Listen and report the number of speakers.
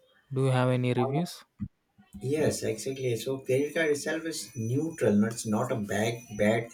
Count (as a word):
two